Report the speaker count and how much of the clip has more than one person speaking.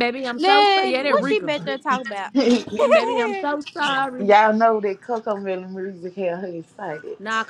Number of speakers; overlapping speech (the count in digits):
3, about 17%